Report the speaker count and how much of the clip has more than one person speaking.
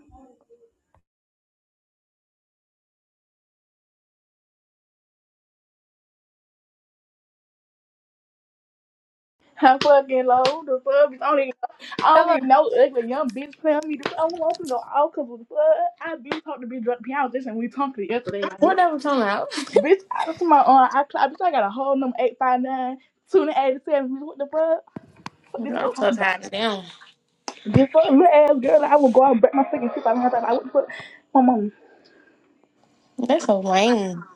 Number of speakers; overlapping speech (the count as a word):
two, about 3%